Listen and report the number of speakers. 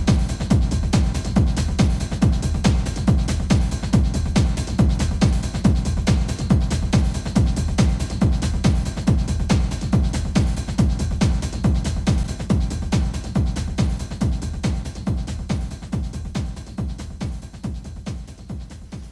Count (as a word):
zero